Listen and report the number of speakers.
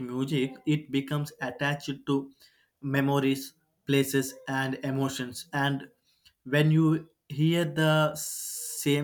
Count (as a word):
one